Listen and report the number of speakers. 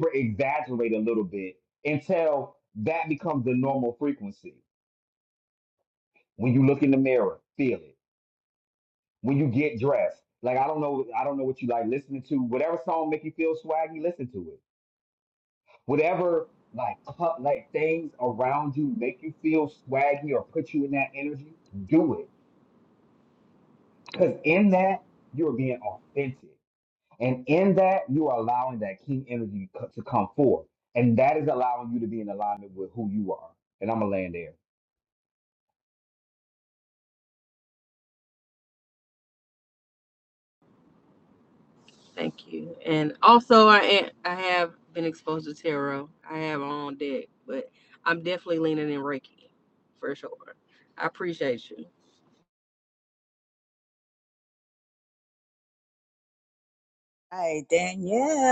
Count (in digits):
3